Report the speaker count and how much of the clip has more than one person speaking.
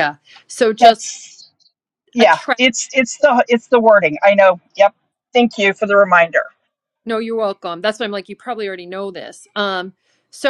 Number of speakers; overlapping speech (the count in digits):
2, about 5%